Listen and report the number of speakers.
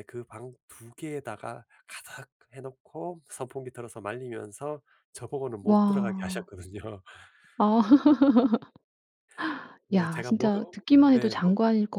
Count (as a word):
two